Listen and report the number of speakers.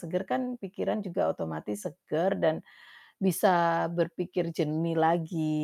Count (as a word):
one